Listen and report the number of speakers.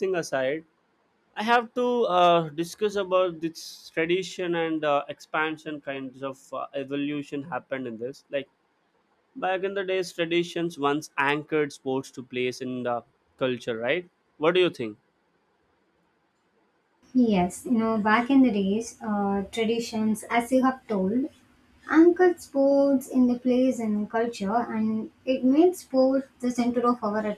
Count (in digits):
2